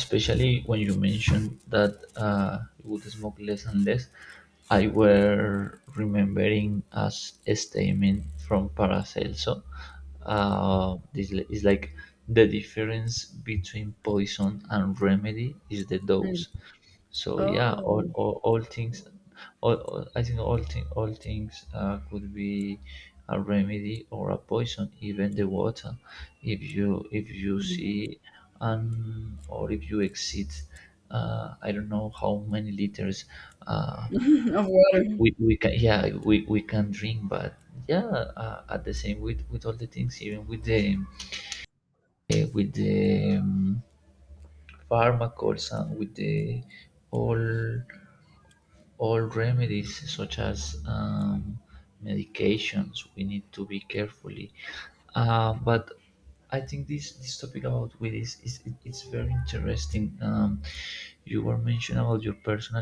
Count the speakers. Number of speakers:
2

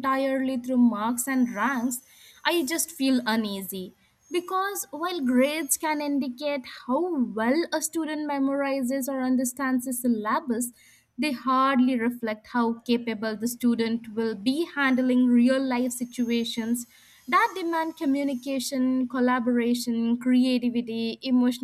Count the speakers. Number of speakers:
1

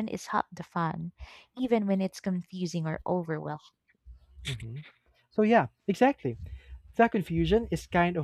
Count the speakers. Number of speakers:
2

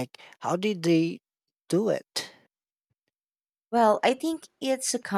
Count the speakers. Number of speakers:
2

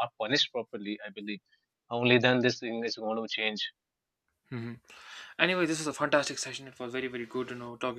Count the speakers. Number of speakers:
2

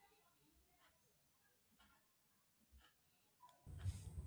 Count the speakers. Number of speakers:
0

